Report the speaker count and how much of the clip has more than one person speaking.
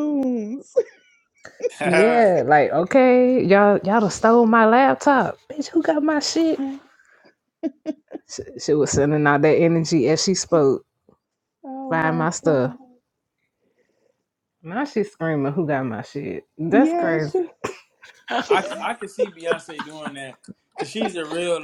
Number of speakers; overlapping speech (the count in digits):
3, about 7%